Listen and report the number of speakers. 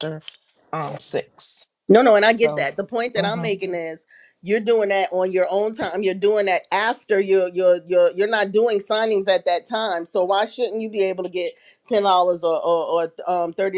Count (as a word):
two